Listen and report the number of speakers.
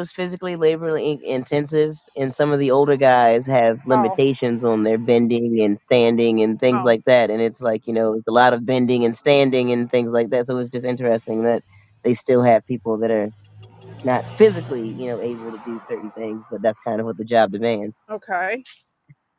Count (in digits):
2